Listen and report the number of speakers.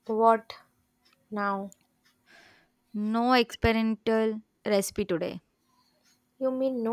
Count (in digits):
2